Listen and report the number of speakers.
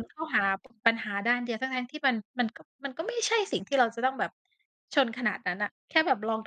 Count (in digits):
1